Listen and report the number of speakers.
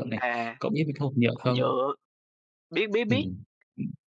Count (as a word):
two